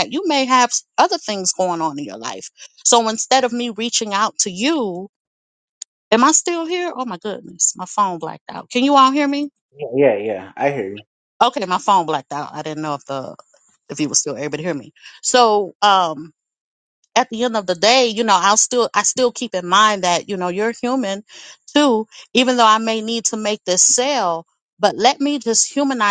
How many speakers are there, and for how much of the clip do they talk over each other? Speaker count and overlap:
2, no overlap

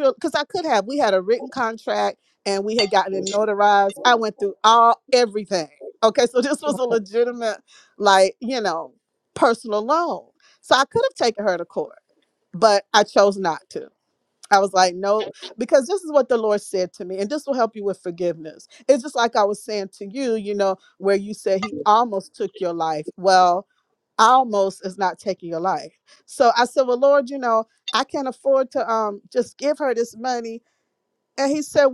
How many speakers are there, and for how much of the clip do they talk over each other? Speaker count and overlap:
1, no overlap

